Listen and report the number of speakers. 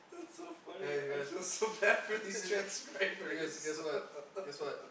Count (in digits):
2